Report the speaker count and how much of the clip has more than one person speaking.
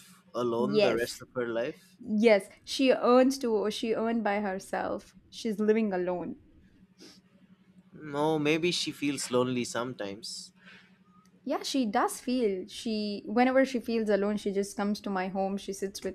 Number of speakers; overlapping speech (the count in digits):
2, about 2%